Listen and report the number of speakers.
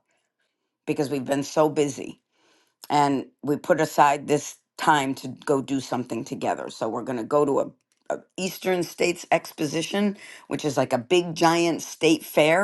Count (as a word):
one